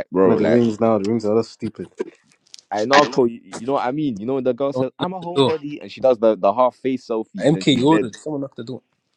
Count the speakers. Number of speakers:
three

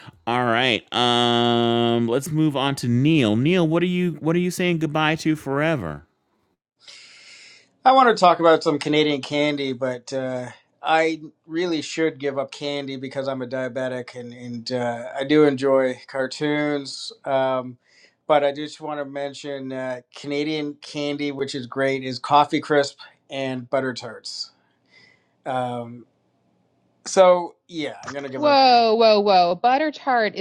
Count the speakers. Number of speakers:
three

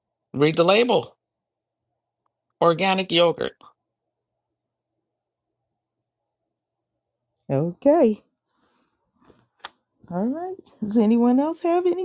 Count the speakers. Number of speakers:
two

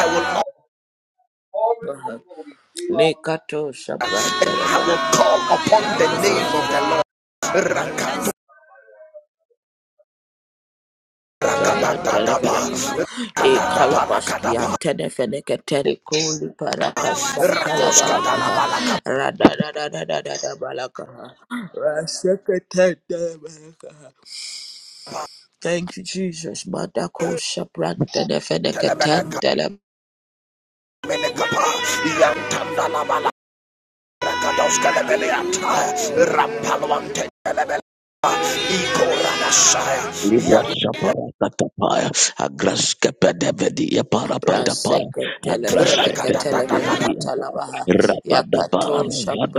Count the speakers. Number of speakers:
four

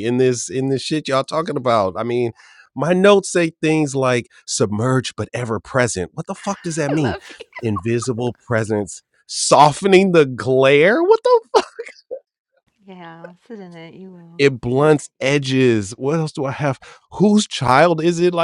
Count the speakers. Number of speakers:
two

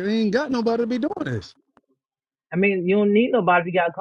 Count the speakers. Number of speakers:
two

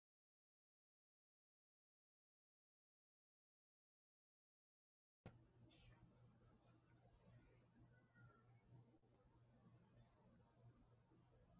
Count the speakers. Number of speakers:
zero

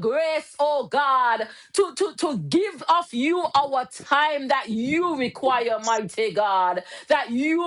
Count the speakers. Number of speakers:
one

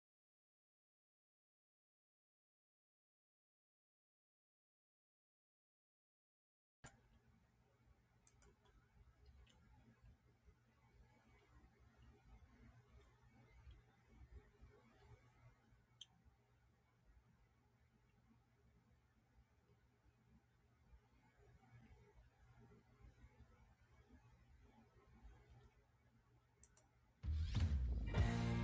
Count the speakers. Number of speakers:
zero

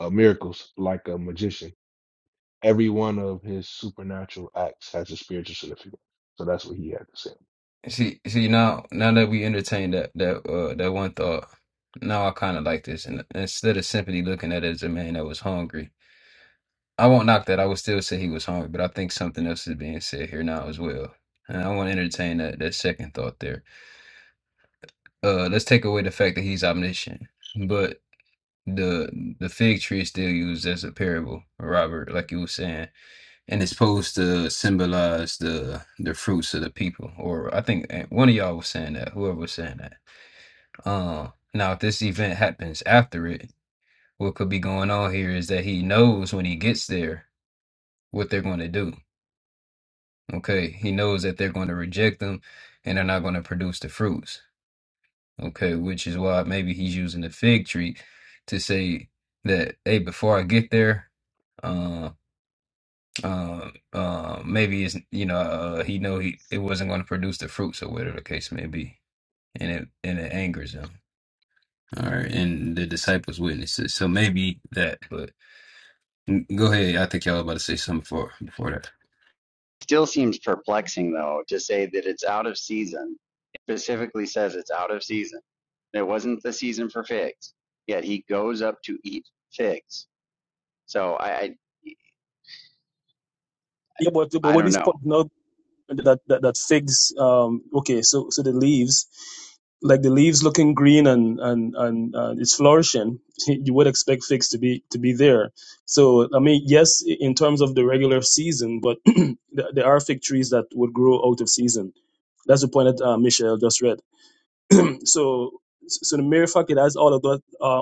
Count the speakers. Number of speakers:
four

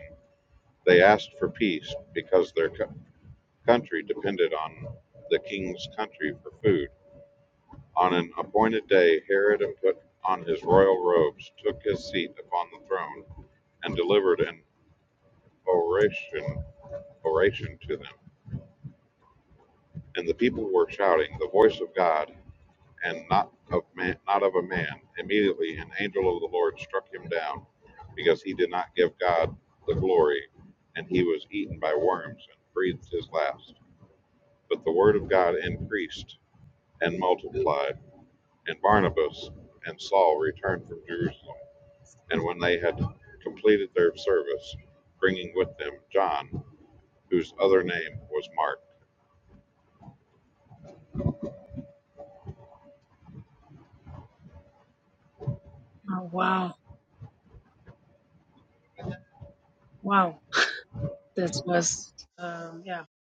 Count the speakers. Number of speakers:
two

